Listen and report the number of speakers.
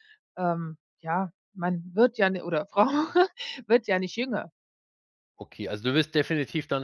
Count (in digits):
2